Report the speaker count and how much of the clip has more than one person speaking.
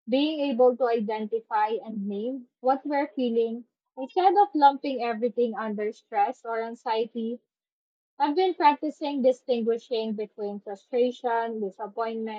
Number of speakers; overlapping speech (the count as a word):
one, no overlap